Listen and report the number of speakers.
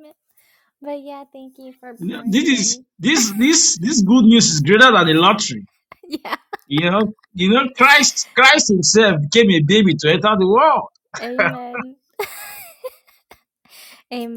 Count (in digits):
2